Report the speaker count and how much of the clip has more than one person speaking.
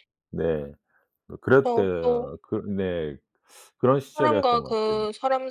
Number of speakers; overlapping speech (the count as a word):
two, about 27%